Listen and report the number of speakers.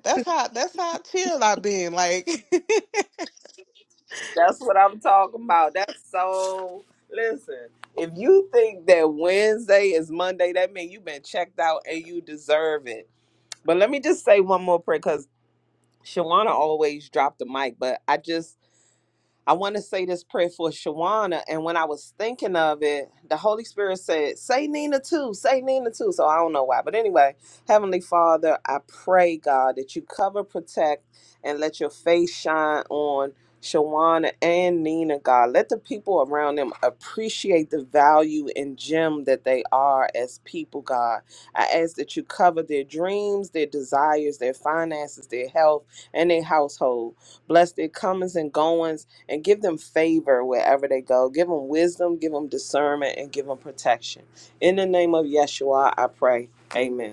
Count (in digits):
2